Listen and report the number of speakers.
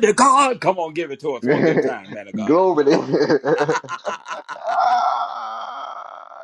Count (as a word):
two